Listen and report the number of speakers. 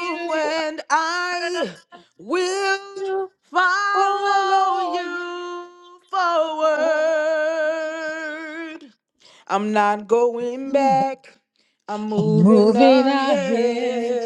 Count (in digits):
2